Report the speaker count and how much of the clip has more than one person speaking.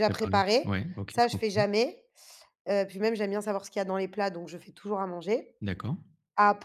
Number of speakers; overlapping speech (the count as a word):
two, about 18%